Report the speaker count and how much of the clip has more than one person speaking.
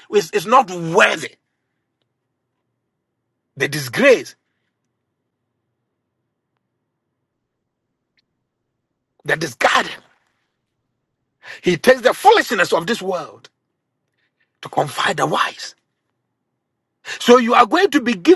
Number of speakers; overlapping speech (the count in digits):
1, no overlap